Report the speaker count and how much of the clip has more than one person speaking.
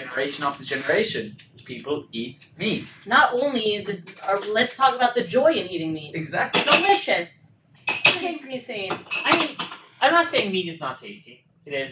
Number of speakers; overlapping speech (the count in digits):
3, about 5%